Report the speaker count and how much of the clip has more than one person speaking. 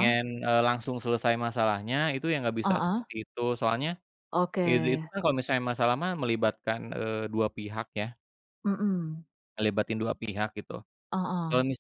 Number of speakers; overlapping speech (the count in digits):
2, about 8%